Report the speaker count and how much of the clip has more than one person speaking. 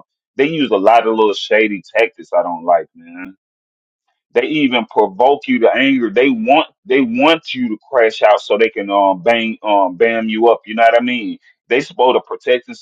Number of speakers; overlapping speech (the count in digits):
1, no overlap